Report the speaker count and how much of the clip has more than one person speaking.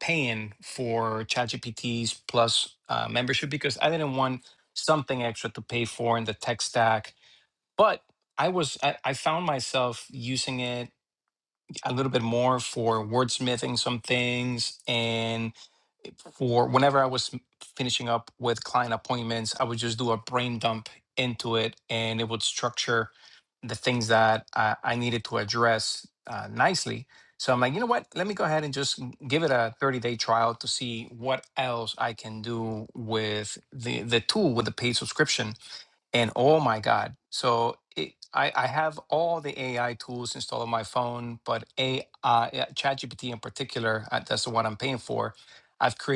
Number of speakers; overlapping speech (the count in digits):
1, no overlap